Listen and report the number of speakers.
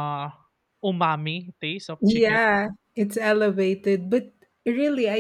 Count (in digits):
2